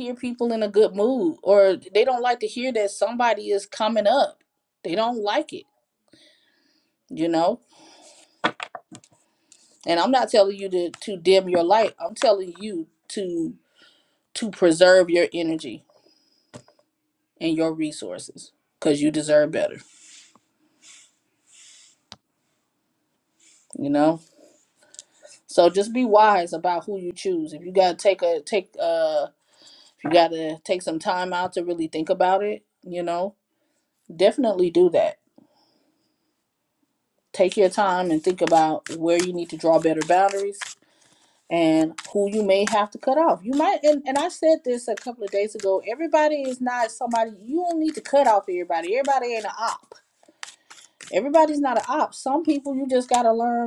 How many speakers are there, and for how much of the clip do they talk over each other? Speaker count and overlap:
one, no overlap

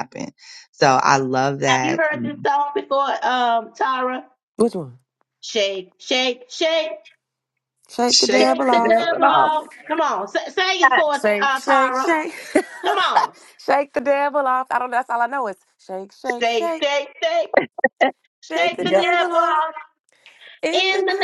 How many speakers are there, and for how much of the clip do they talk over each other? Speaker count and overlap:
three, about 24%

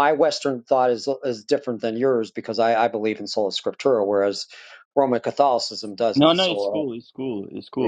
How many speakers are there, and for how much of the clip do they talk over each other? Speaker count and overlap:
two, about 10%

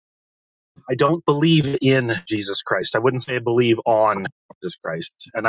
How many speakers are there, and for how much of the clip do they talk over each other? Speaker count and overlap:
one, no overlap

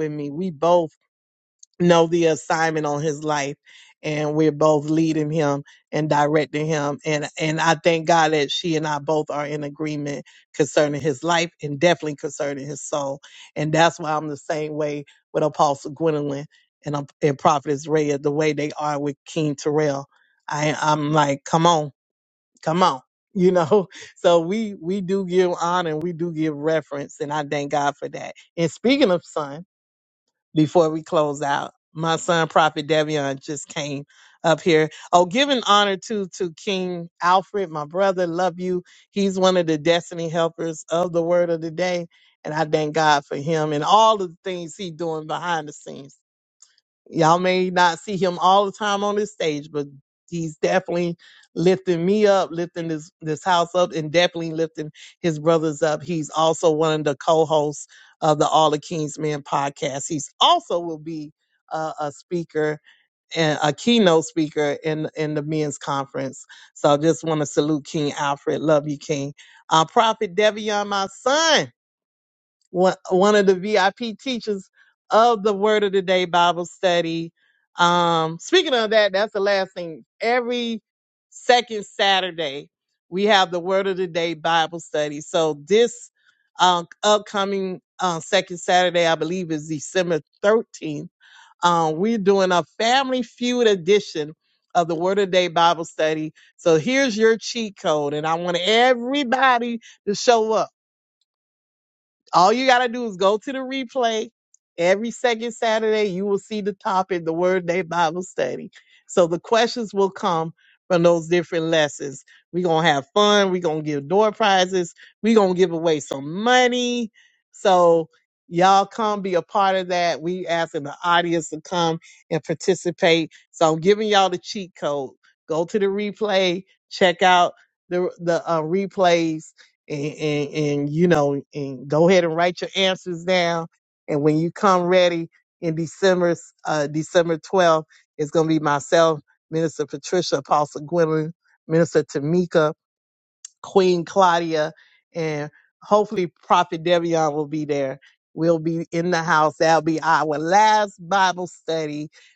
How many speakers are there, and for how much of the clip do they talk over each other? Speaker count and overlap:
one, no overlap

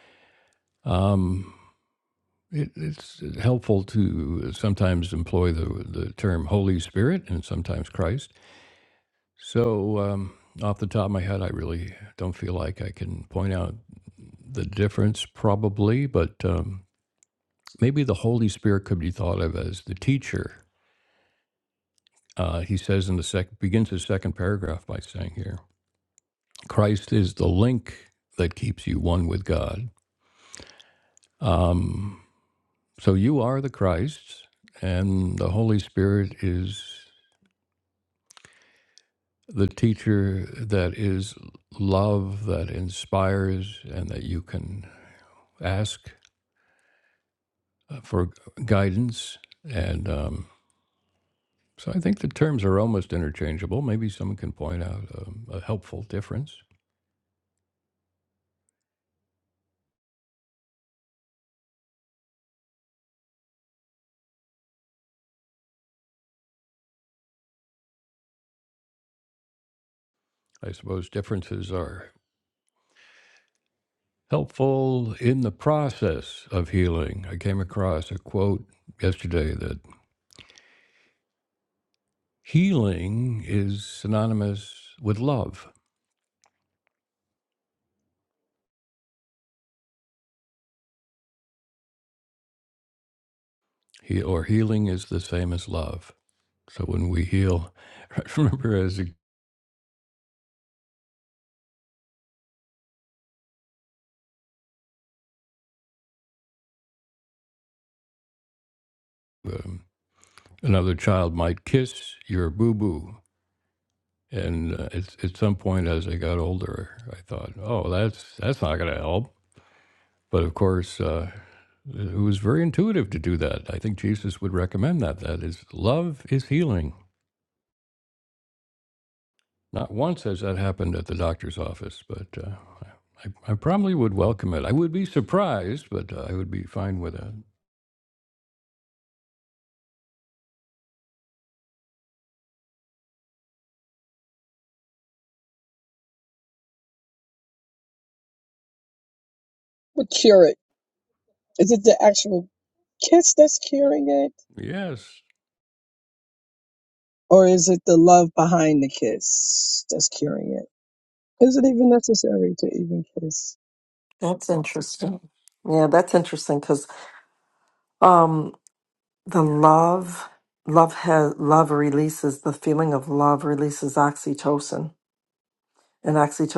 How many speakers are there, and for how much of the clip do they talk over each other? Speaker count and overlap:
three, no overlap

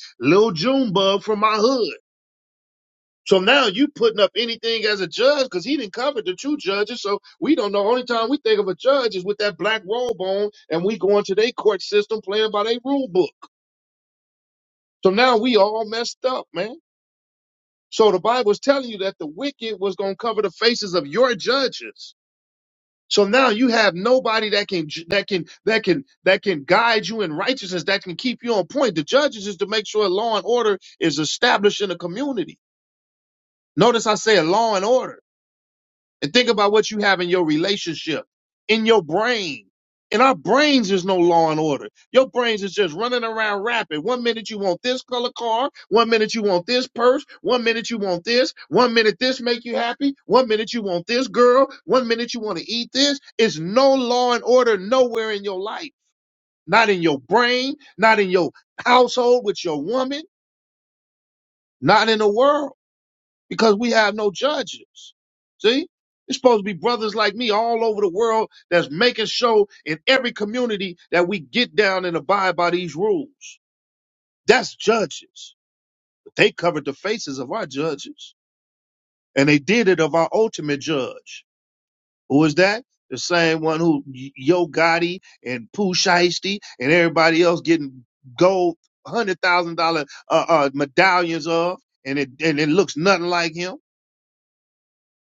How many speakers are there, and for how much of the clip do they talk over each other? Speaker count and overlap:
one, no overlap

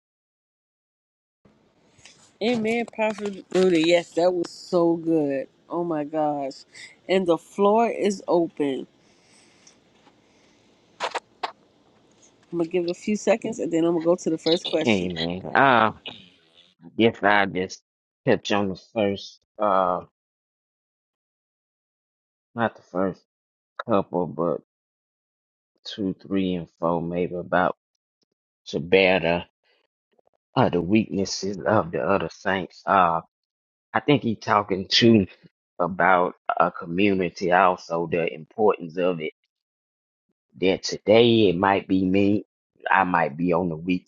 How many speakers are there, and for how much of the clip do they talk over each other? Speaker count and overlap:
two, about 1%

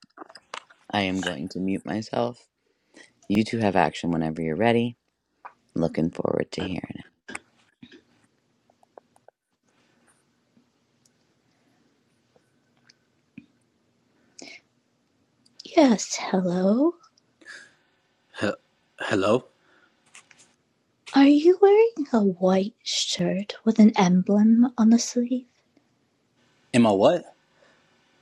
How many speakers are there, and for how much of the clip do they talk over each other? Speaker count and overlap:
three, no overlap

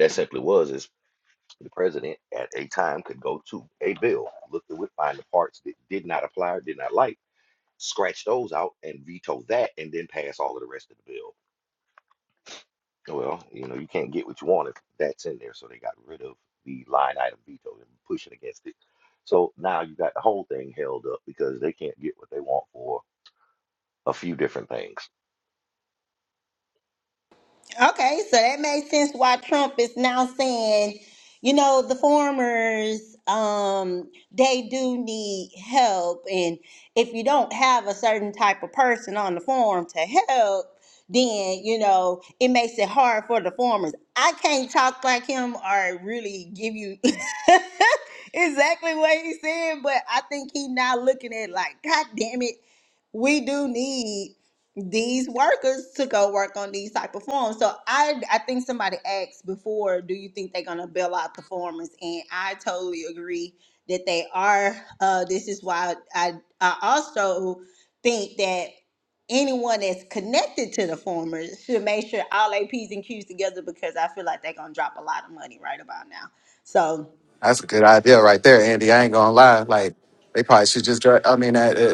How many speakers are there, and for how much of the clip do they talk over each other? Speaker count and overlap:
three, no overlap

